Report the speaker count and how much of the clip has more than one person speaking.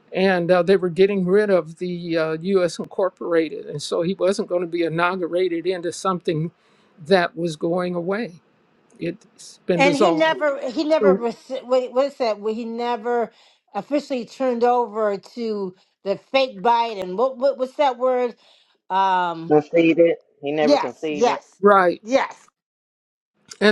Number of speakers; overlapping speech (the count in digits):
3, about 7%